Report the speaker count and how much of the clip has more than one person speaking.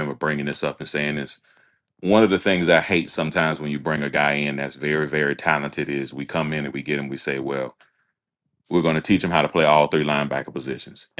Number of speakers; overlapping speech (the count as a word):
one, no overlap